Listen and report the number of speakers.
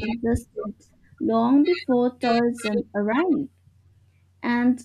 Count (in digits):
1